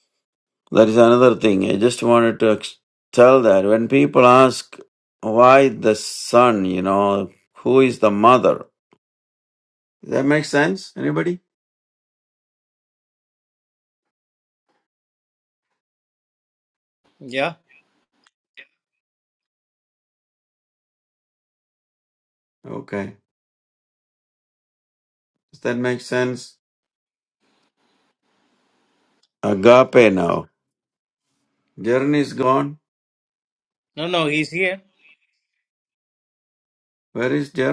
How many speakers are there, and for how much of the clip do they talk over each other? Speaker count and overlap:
two, no overlap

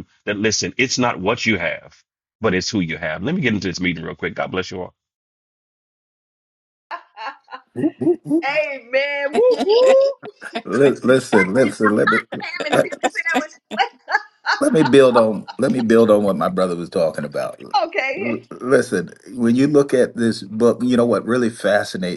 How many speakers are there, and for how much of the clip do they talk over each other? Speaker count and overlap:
three, about 2%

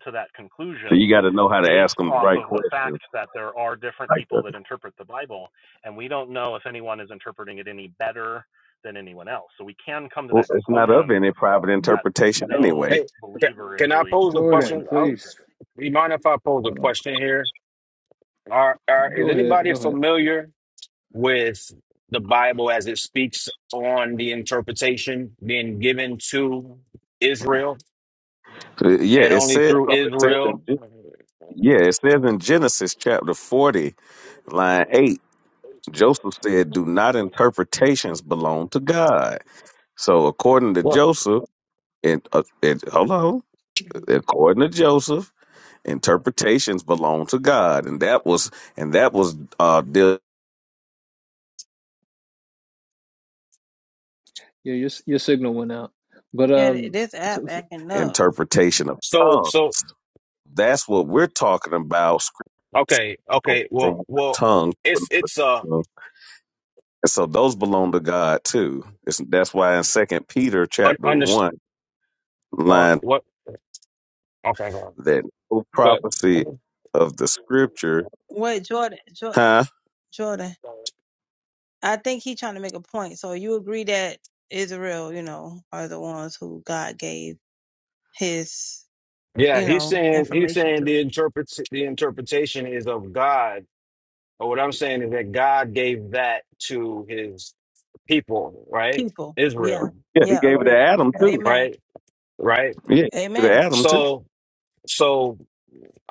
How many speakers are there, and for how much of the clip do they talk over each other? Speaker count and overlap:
five, about 15%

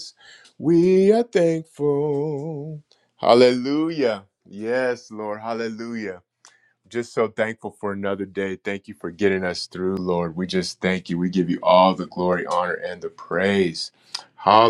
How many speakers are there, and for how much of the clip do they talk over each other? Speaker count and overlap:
one, no overlap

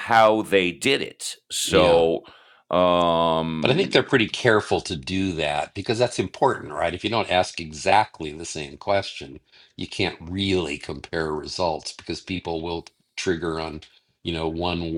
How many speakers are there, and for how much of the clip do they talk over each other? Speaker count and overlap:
two, about 4%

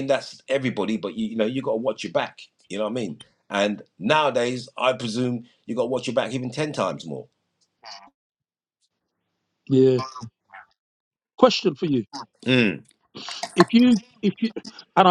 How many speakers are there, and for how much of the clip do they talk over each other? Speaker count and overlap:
two, no overlap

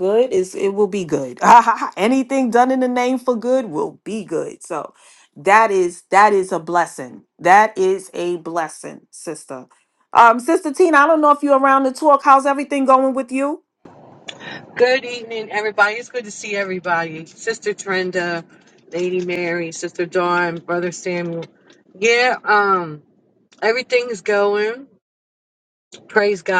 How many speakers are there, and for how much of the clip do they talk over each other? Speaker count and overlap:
two, no overlap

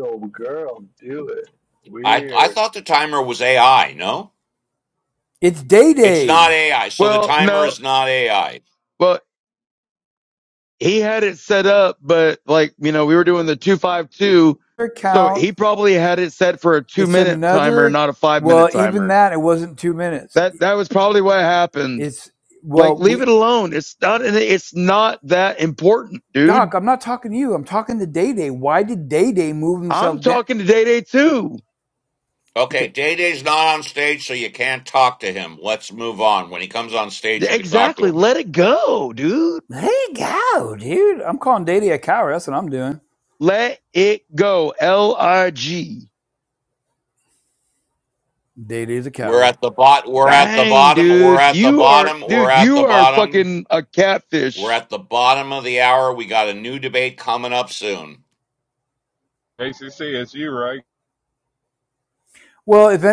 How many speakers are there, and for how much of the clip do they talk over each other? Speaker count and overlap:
five, about 15%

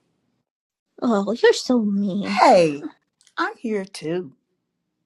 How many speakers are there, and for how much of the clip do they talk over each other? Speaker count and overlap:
two, about 2%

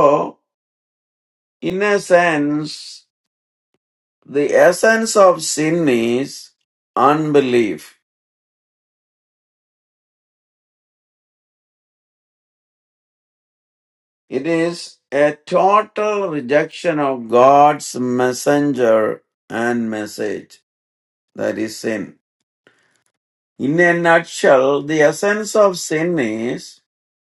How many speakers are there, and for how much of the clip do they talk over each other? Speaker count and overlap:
one, no overlap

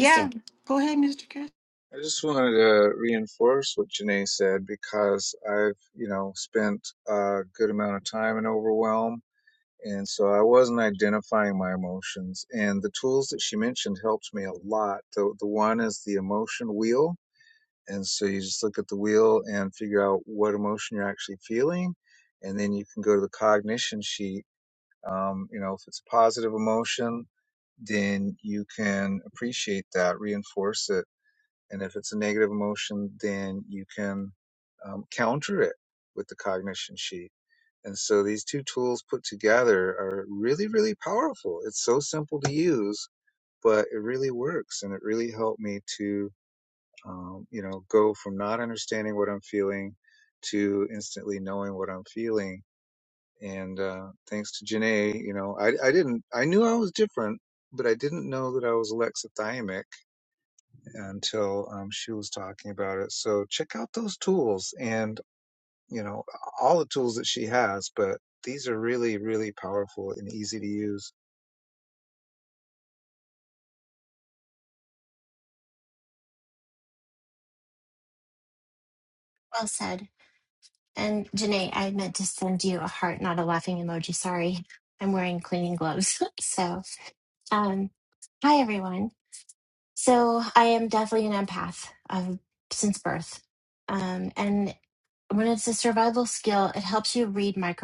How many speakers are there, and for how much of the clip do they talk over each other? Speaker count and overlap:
three, under 1%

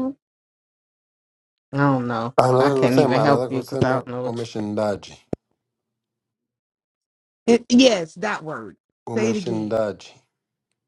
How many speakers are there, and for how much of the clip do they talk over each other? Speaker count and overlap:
three, about 24%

